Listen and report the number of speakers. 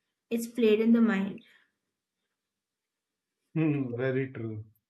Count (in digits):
2